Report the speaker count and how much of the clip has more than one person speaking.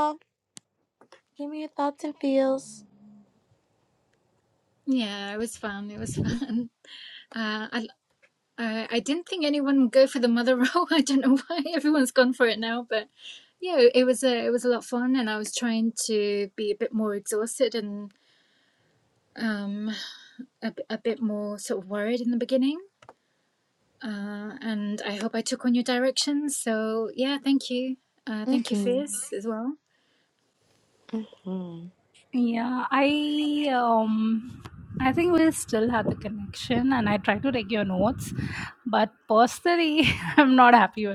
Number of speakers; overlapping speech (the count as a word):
three, about 1%